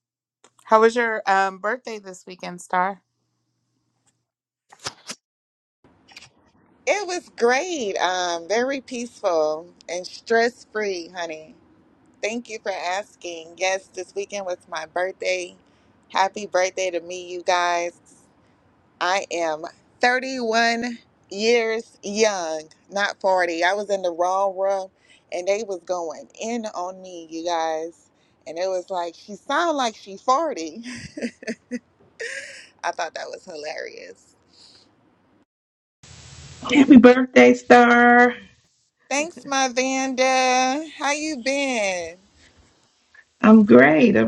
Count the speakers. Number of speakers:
three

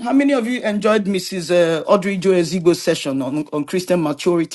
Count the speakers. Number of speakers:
one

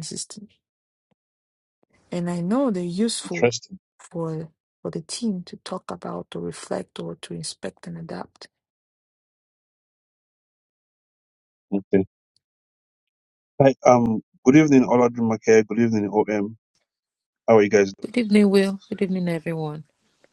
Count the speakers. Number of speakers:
three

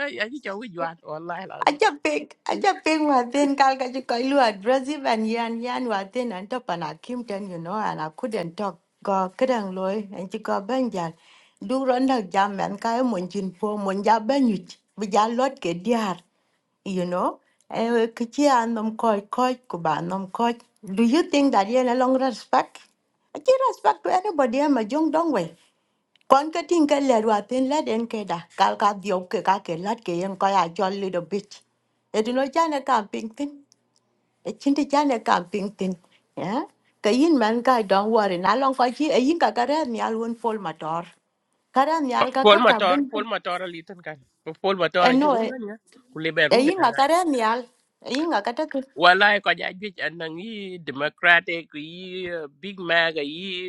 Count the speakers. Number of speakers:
two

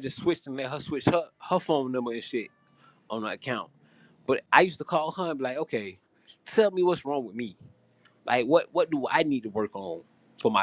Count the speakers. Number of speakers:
one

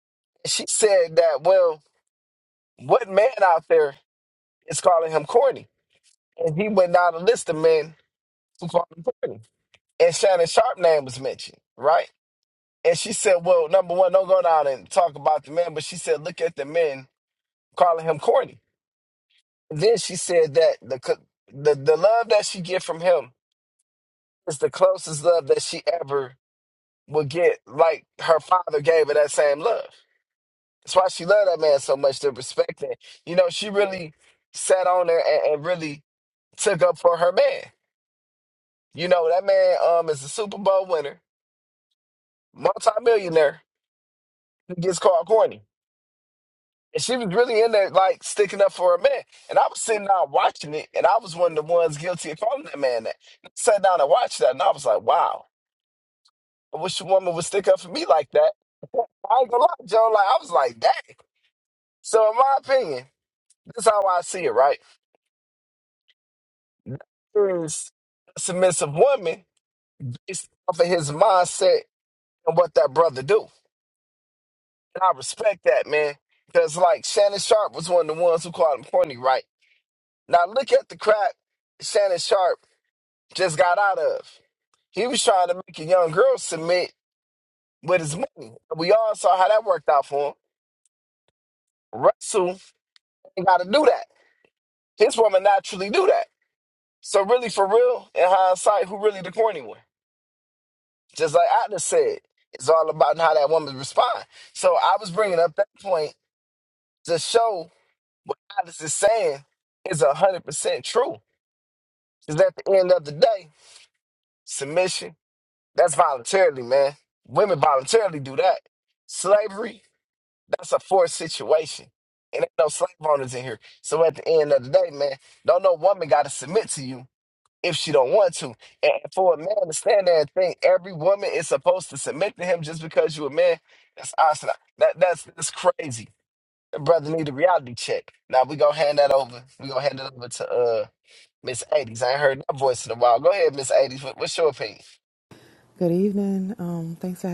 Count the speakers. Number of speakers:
two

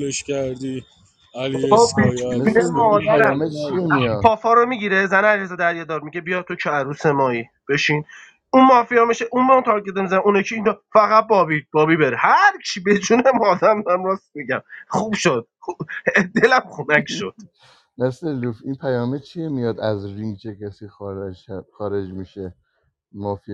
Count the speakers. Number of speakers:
three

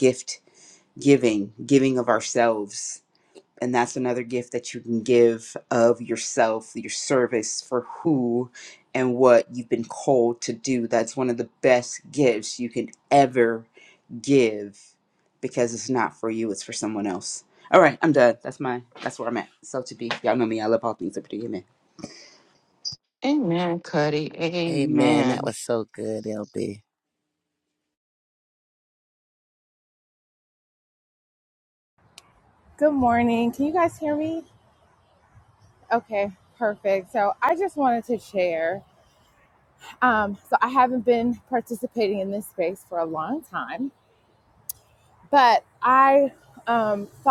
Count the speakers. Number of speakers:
four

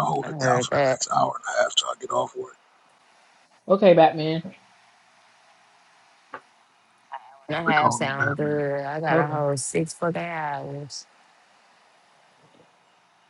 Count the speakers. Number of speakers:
three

